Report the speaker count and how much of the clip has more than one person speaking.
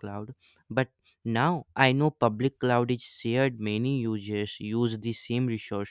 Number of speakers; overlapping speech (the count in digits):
1, no overlap